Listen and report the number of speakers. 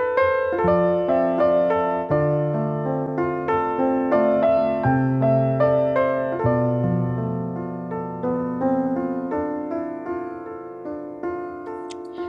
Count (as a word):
zero